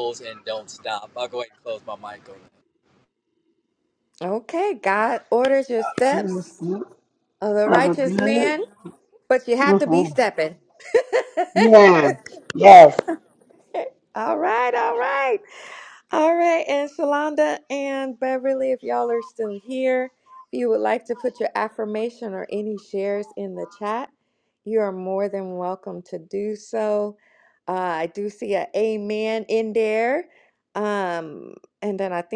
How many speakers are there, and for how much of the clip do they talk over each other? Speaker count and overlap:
3, about 4%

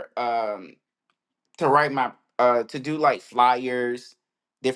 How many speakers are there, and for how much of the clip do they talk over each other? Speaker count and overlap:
1, no overlap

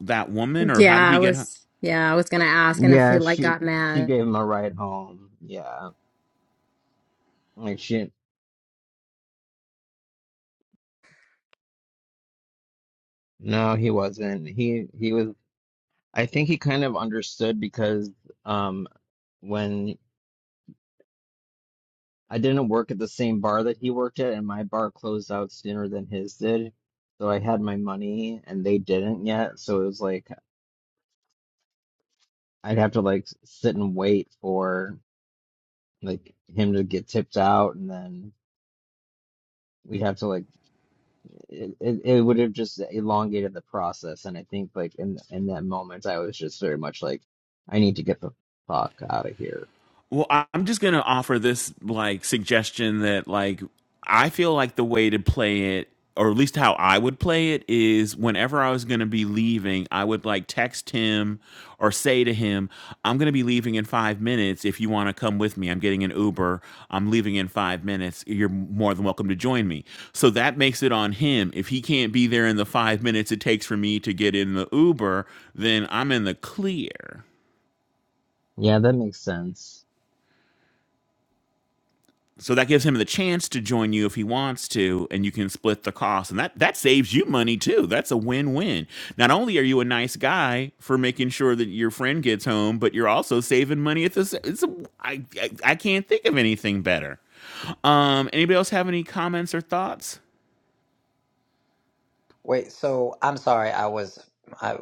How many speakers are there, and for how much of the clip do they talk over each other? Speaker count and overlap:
4, about 2%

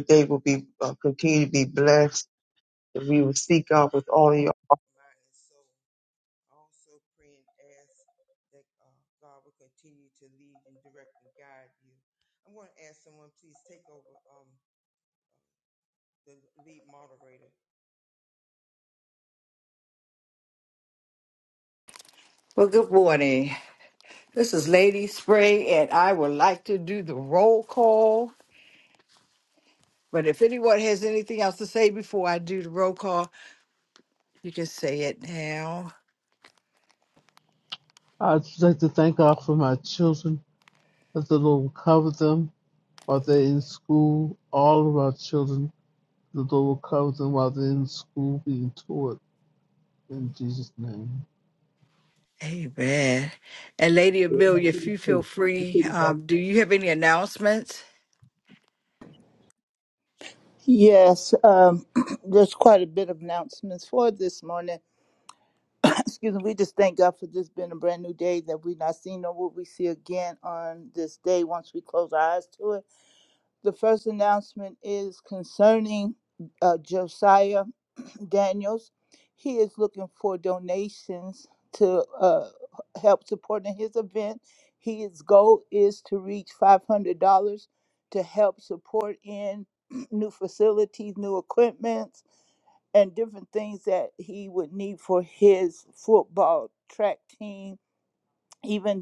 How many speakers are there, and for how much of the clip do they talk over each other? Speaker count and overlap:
4, no overlap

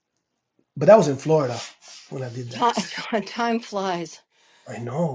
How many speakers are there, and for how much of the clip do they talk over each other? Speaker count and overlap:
2, about 2%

